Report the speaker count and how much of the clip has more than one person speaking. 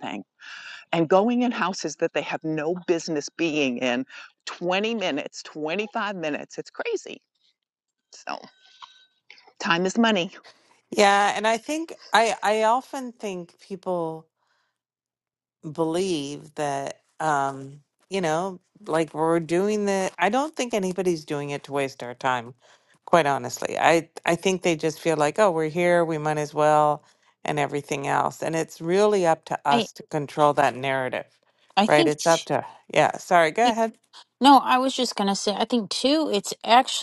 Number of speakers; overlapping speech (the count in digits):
3, about 1%